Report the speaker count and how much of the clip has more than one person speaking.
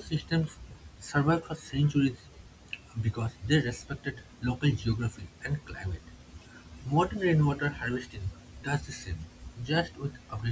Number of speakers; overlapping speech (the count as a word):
one, no overlap